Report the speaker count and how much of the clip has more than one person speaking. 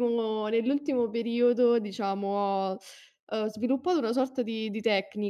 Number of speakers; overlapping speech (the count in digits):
1, no overlap